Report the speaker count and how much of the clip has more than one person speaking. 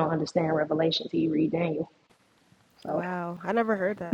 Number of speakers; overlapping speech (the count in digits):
2, about 6%